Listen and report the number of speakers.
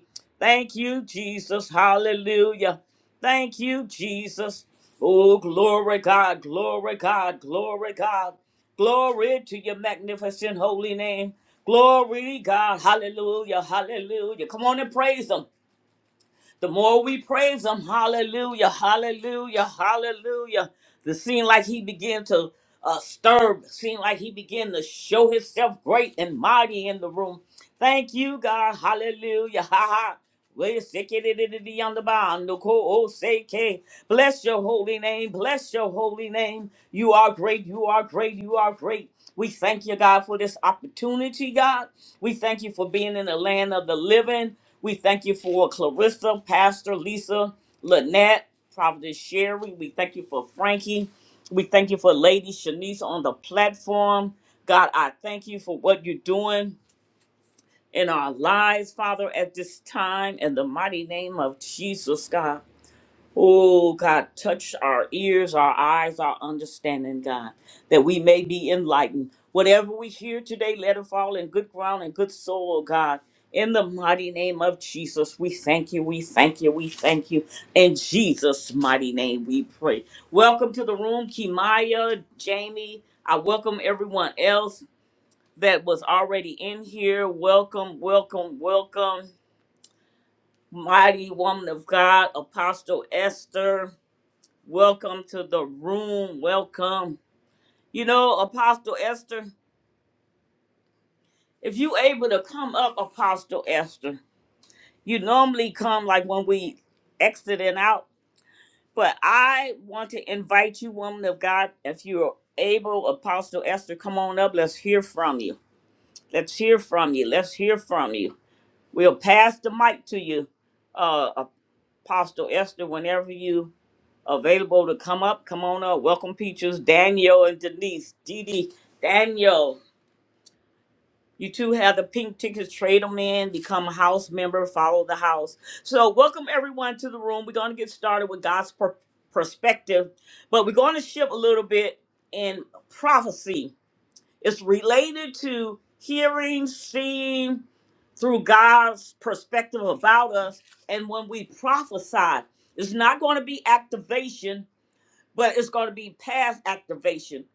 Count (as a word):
one